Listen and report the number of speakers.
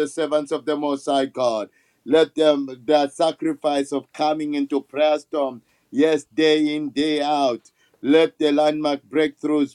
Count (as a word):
one